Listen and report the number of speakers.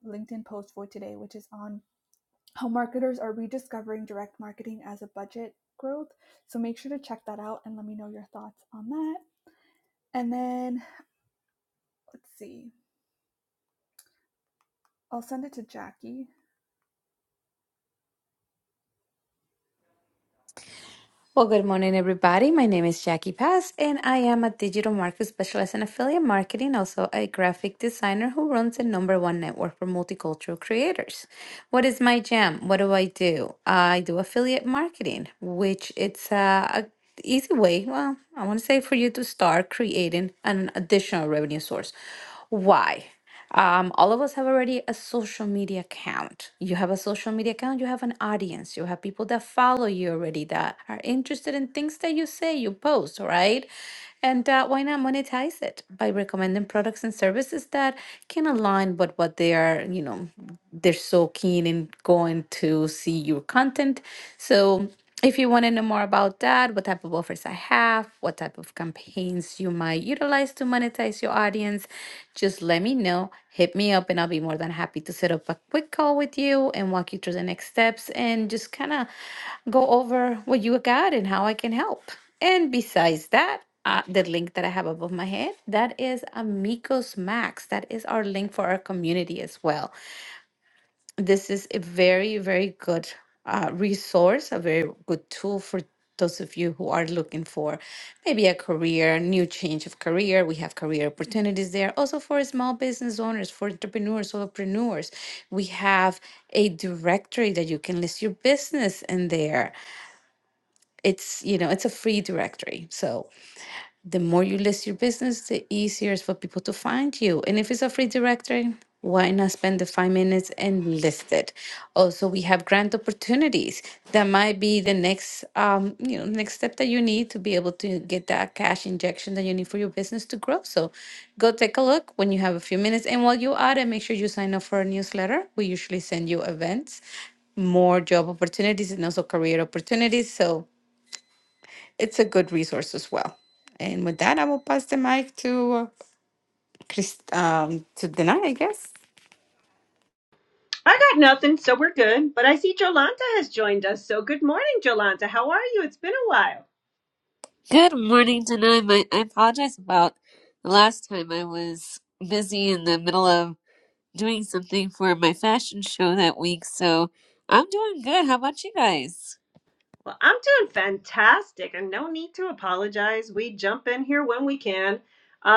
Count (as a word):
four